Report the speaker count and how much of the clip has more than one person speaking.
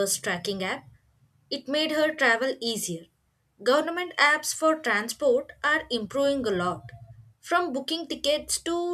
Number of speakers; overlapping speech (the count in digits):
1, no overlap